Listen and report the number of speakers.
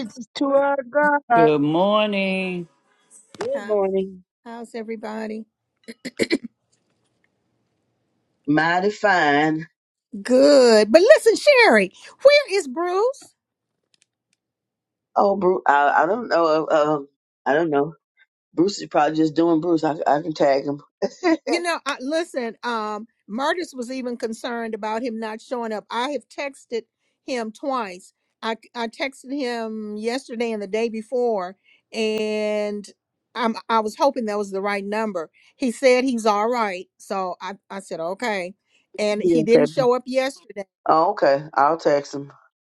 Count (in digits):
4